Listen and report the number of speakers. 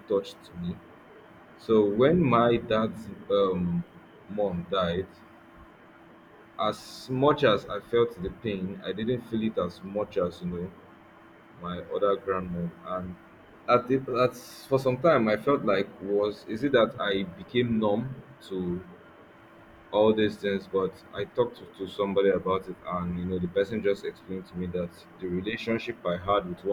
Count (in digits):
1